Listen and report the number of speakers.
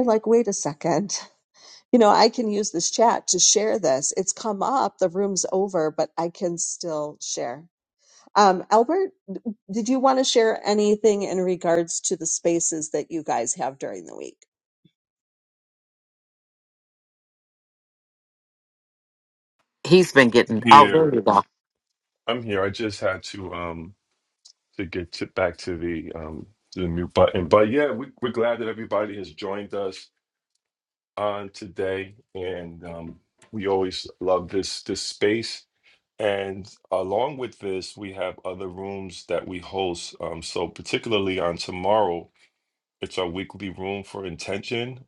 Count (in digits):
3